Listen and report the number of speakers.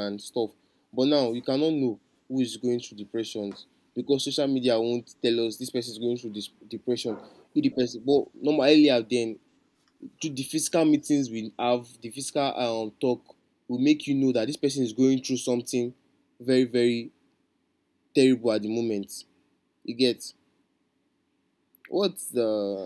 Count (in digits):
1